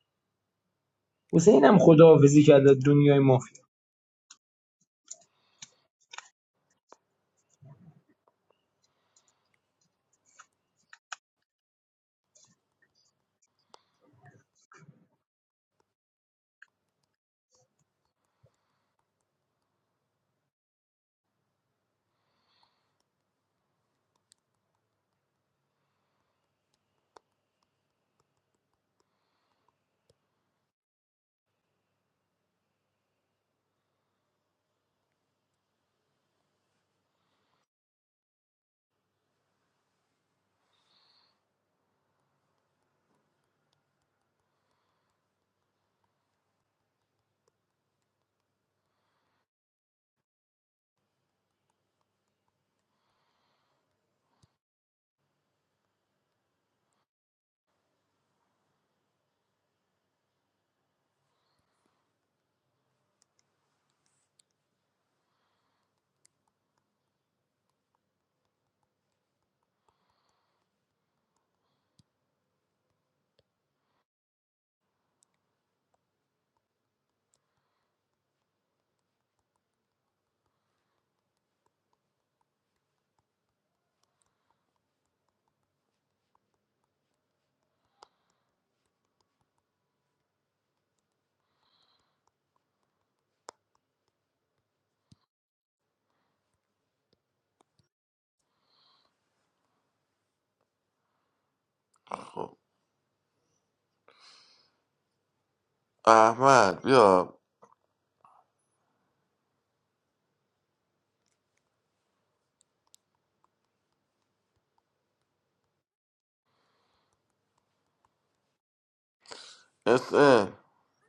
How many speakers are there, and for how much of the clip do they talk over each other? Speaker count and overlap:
two, no overlap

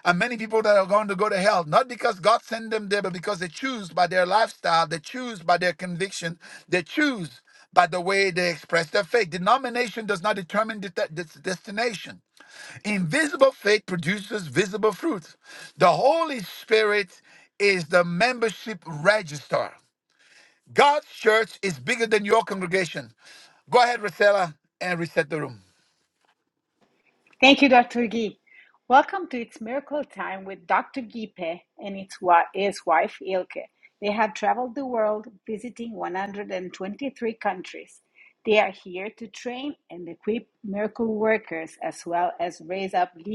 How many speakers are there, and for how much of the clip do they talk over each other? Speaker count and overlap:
two, no overlap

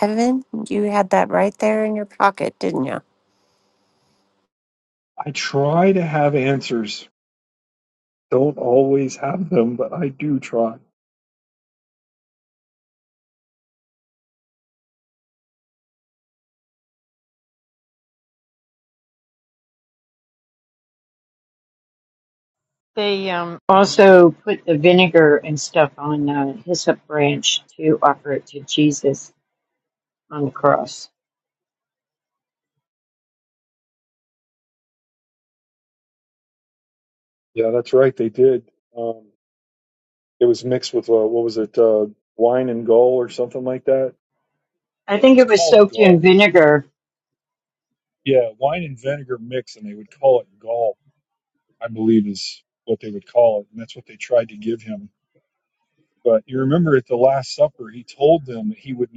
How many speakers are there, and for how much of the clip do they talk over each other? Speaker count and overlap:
three, about 2%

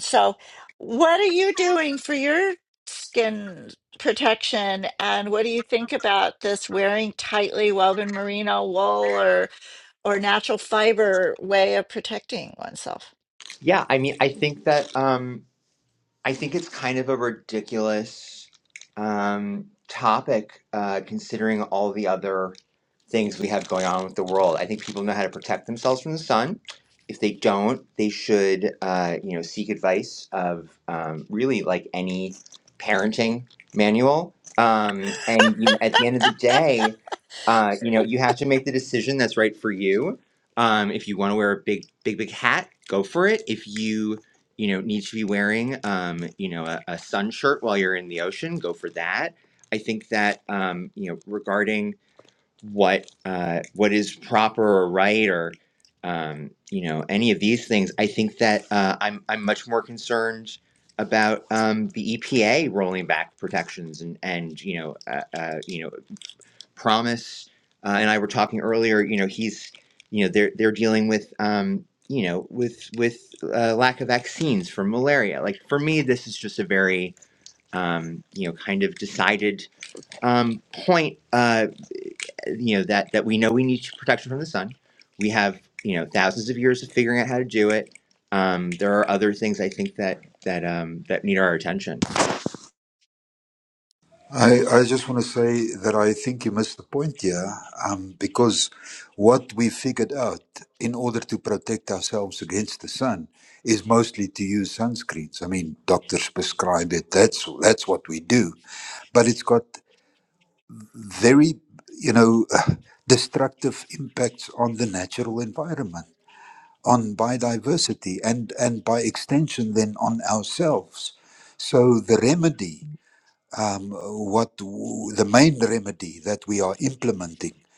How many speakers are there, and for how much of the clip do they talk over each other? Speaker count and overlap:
three, no overlap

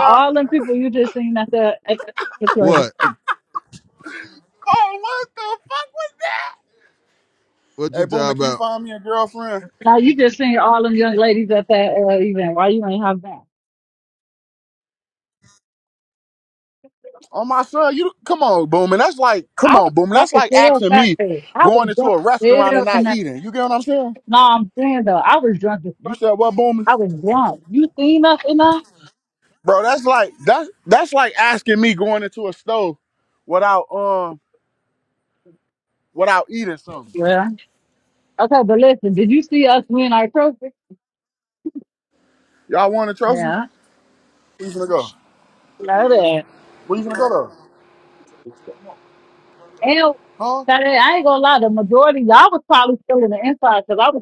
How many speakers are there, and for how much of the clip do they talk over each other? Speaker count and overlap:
three, about 8%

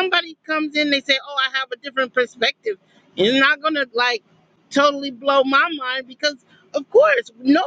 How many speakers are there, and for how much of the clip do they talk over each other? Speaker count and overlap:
one, no overlap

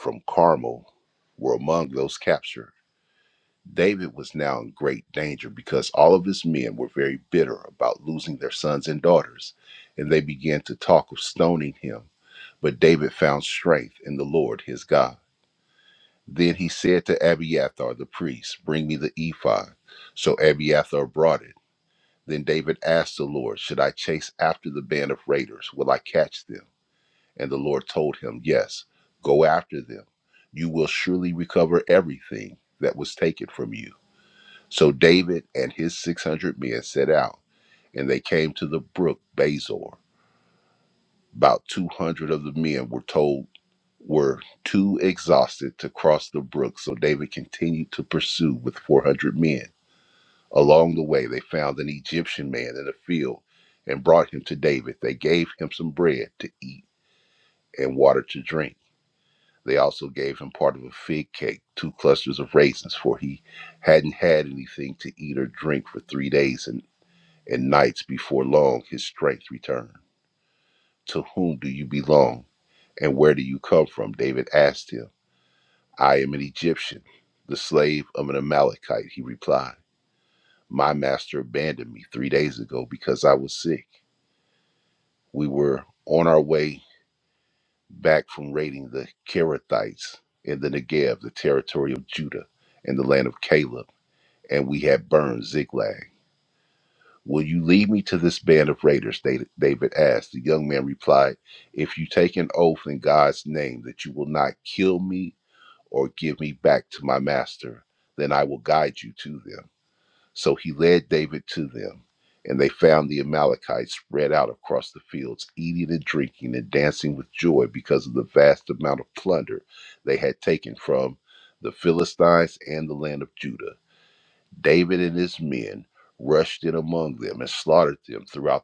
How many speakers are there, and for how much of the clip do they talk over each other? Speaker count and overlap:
one, no overlap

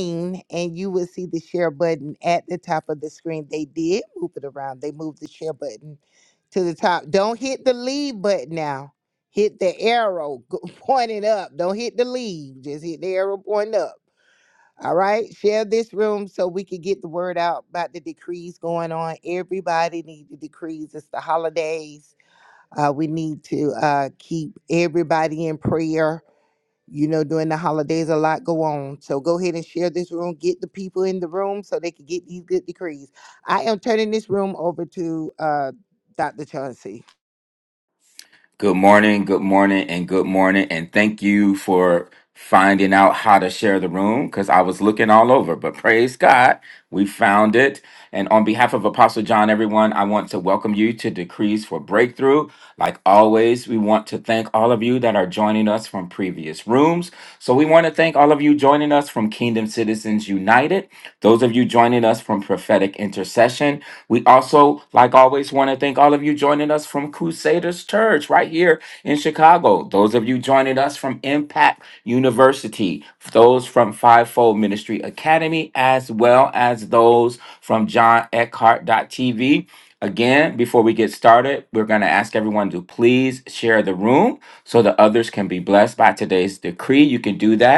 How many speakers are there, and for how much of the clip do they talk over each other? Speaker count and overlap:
two, no overlap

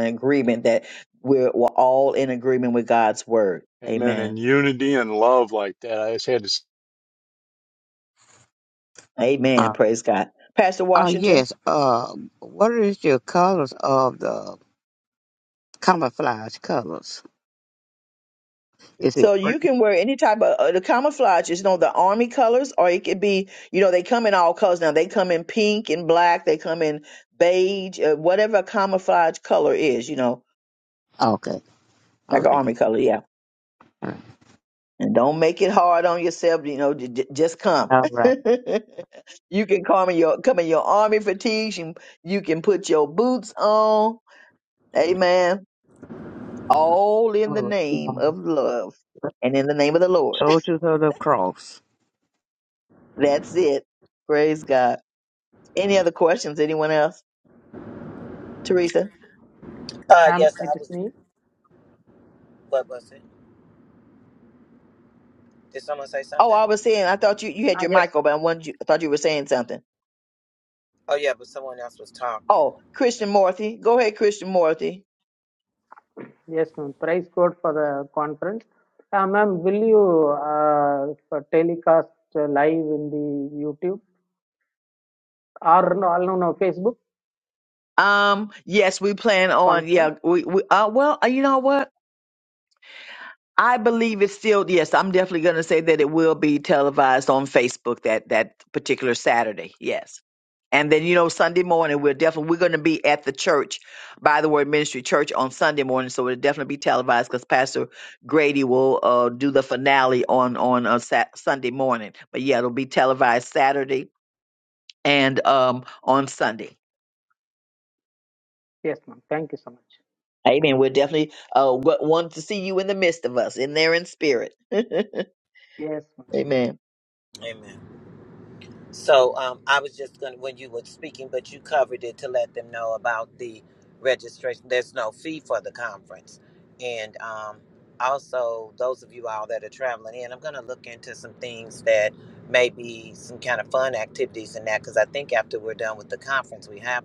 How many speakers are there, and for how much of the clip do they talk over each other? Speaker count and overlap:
five, about 3%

